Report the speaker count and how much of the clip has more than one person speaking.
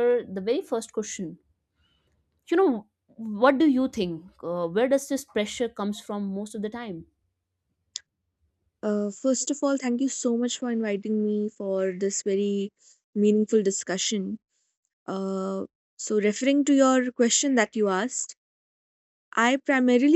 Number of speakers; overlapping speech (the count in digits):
2, no overlap